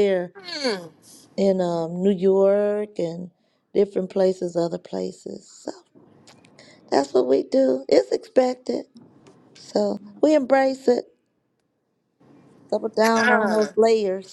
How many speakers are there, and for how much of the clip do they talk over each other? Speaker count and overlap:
two, about 4%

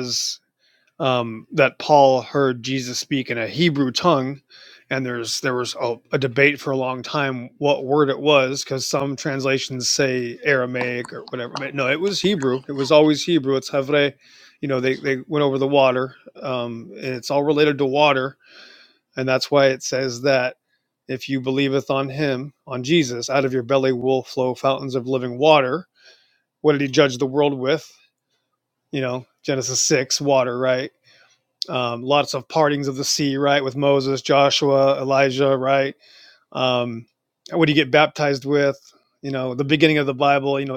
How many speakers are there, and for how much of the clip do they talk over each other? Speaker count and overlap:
one, no overlap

